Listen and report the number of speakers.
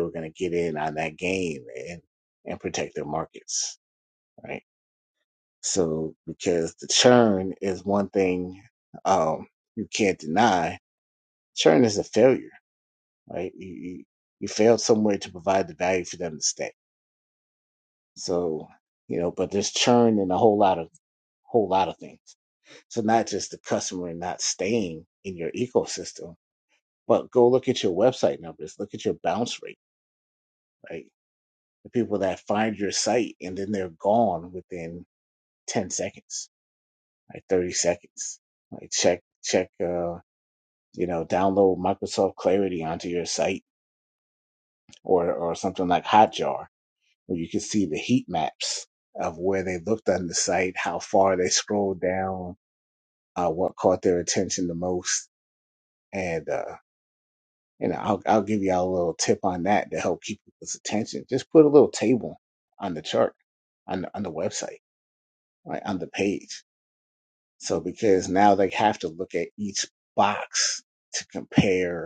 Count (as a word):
one